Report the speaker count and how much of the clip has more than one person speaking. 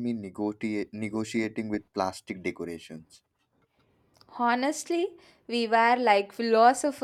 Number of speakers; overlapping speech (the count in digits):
2, no overlap